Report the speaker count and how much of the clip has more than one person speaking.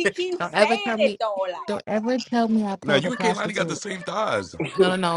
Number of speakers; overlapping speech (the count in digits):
3, about 34%